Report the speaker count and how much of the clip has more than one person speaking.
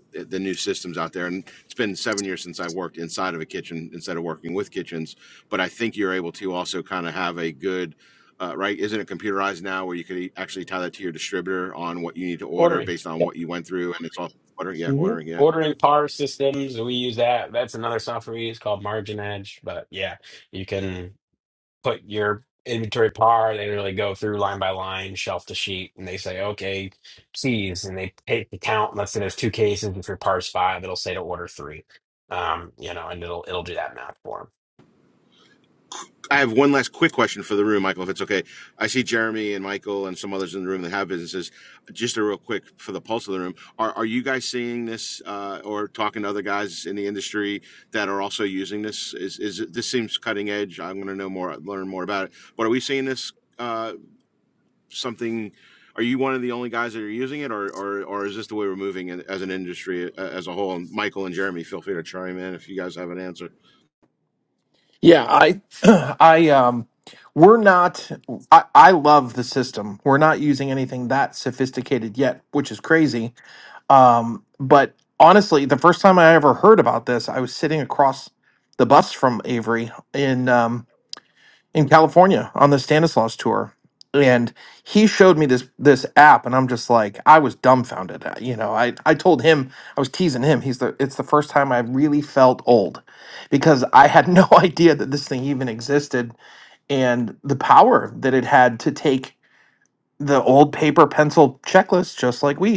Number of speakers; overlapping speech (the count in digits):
3, about 1%